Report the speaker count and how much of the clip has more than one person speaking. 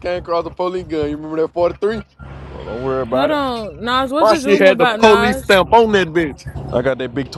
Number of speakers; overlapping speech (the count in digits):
3, about 20%